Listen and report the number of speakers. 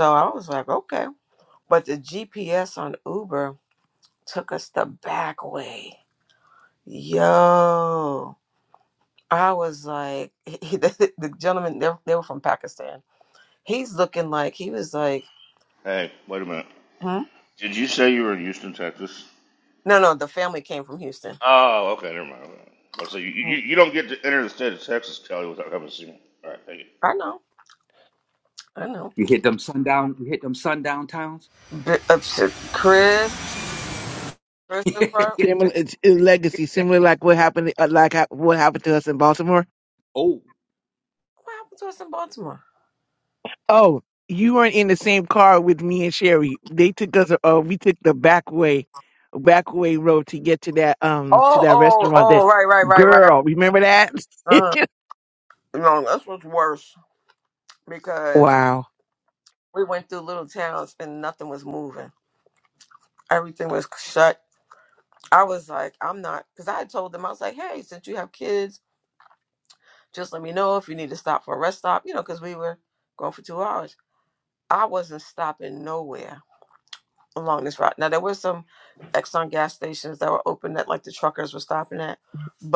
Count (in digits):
4